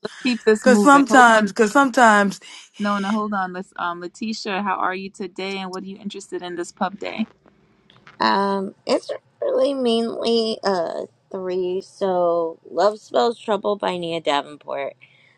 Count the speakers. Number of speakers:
3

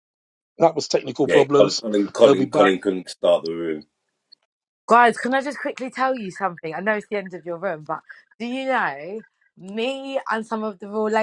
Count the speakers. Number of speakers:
3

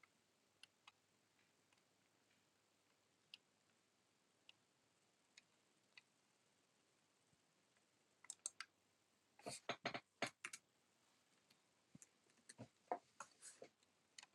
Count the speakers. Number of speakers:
0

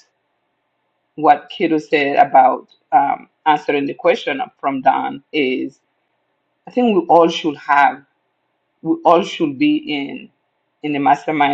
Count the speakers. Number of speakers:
1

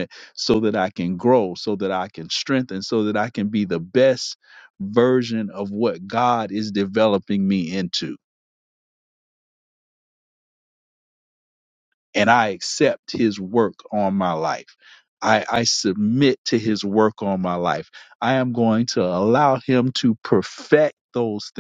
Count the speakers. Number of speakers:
1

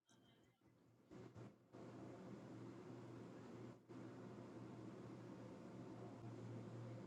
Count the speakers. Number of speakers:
0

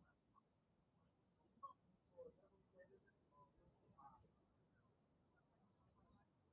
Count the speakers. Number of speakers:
0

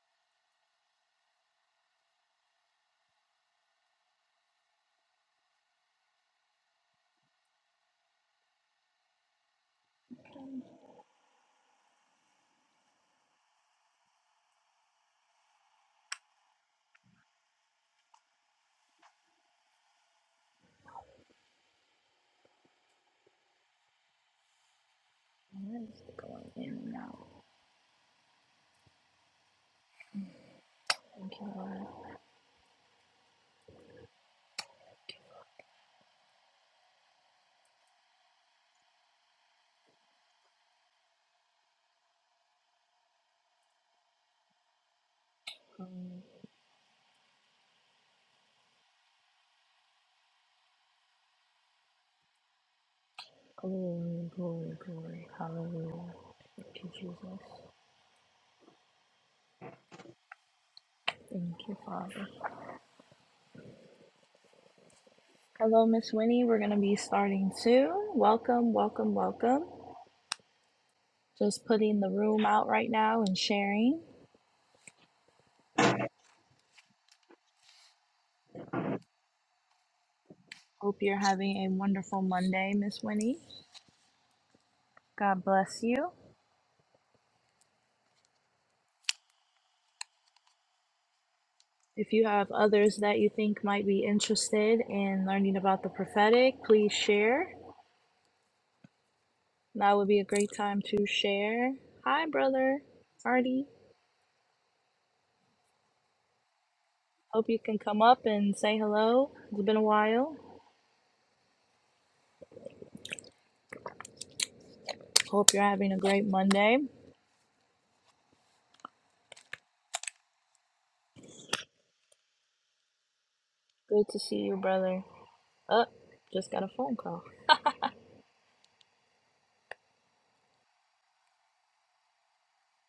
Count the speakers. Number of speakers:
1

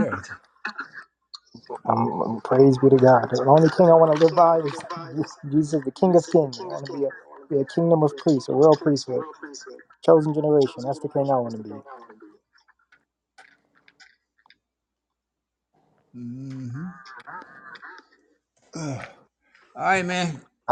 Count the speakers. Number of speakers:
2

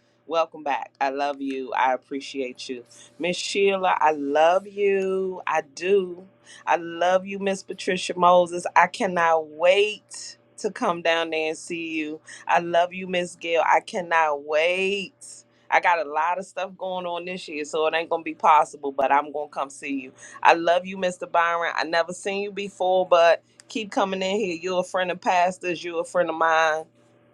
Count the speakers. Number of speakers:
1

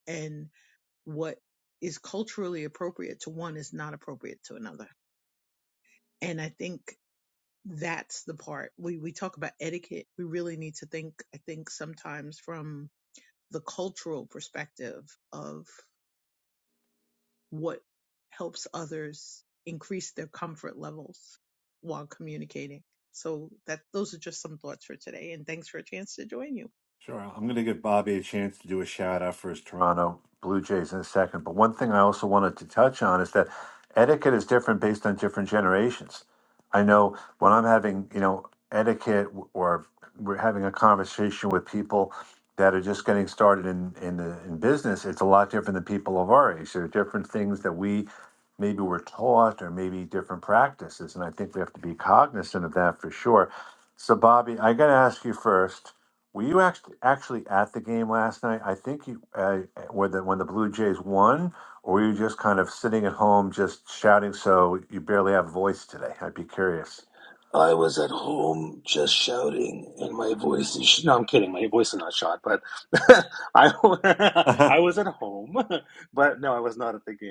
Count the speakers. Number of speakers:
3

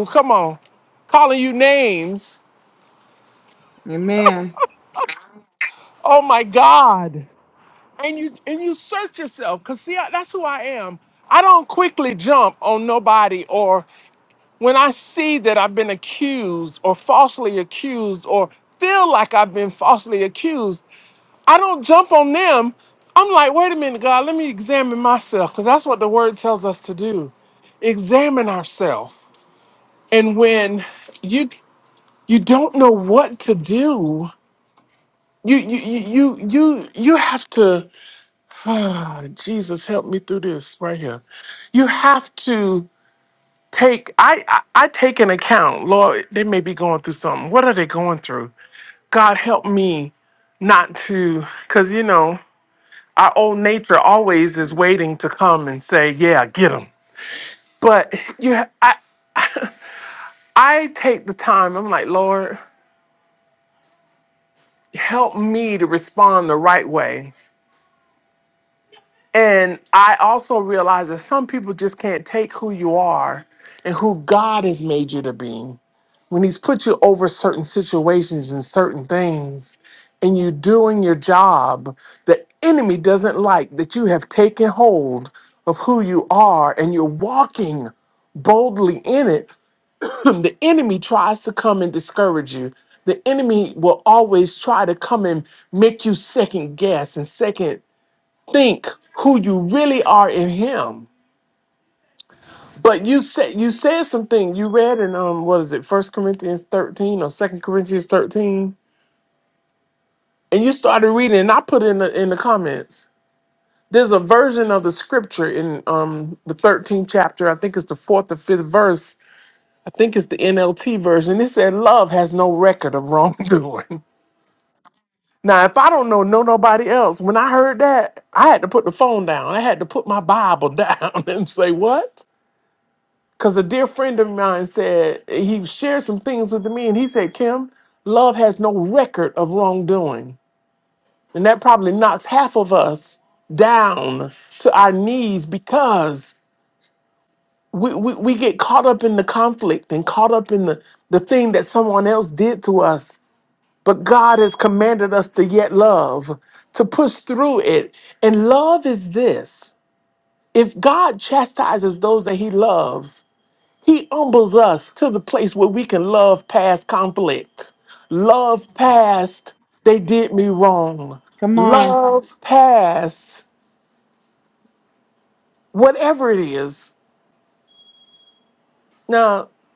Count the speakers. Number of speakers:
2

